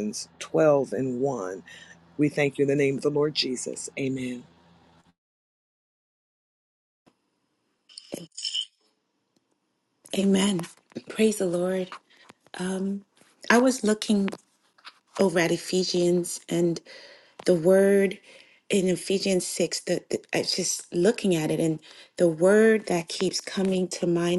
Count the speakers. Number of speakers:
2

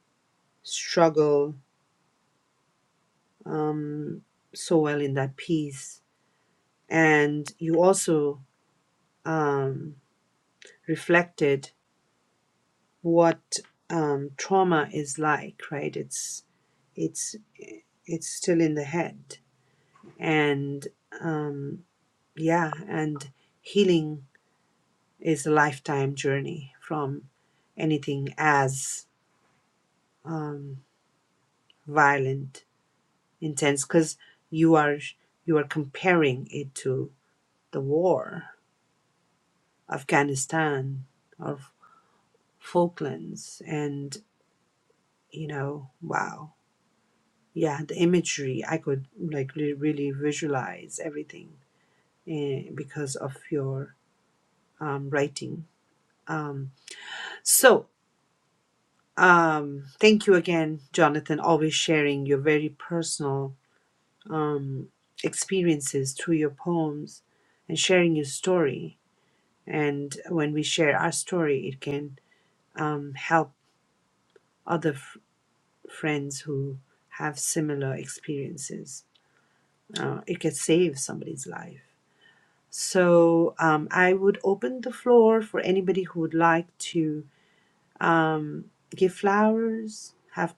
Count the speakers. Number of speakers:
1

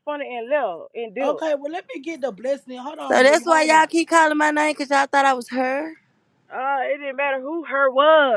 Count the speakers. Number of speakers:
3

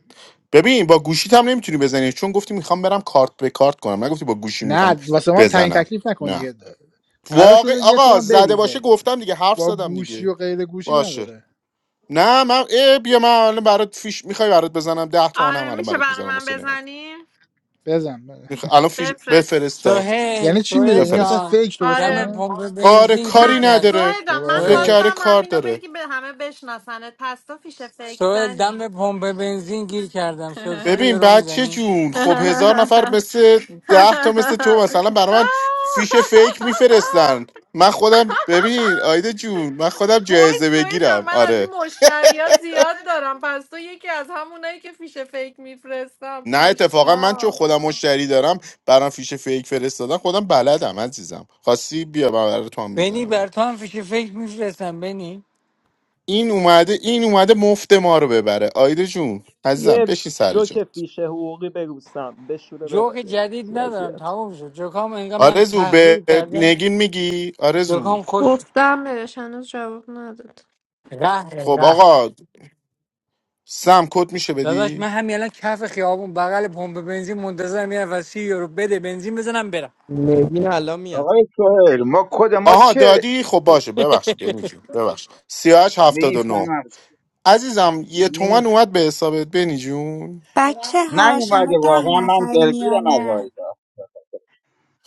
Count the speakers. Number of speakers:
9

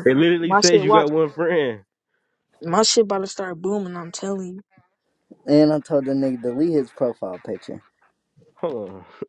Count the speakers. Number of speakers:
3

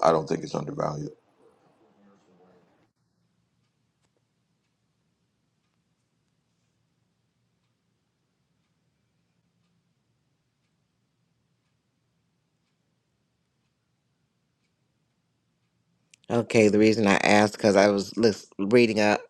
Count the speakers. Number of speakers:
2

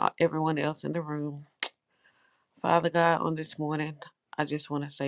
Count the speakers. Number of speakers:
1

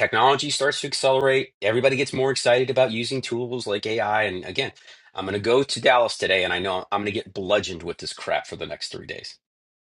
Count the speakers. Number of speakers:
1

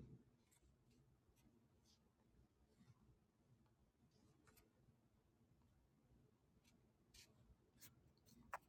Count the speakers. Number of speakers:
0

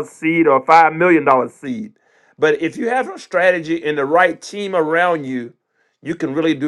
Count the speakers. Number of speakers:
1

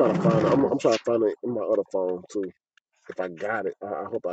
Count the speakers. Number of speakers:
1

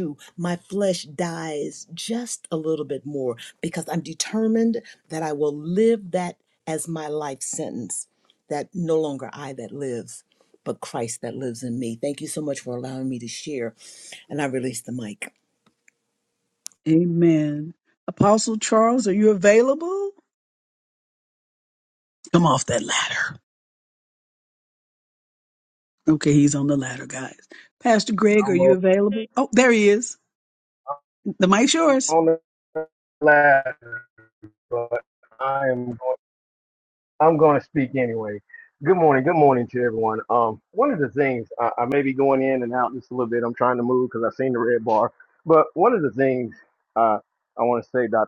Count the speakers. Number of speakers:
3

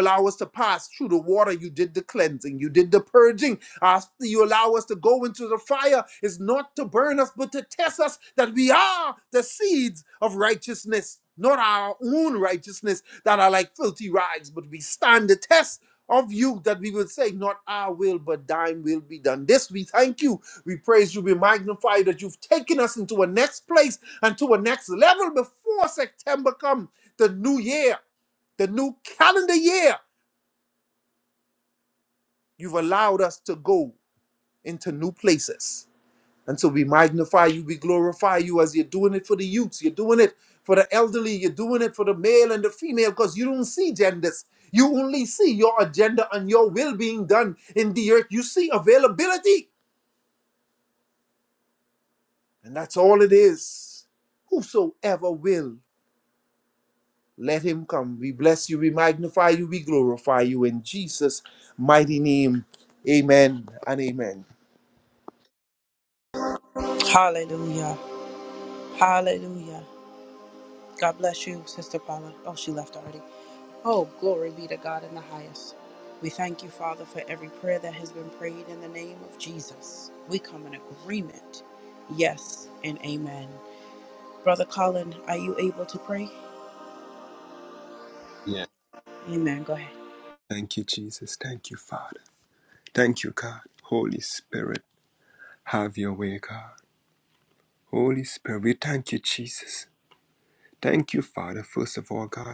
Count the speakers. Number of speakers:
3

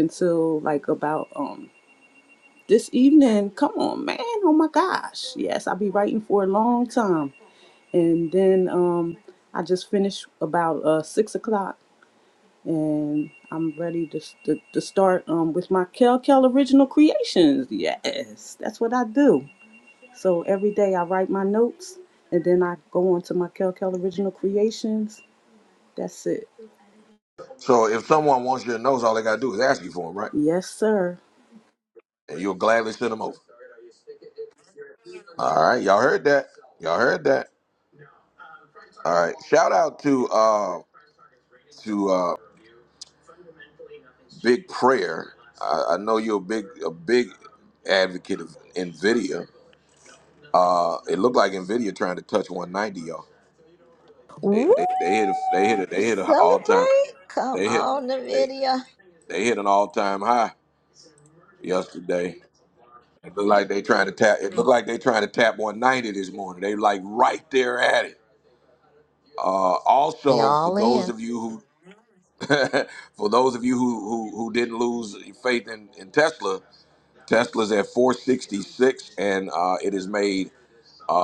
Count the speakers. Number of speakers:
3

